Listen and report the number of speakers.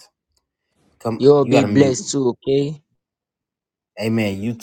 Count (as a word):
two